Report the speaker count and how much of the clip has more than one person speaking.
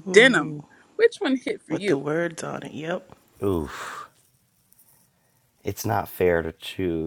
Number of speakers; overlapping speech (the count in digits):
3, about 4%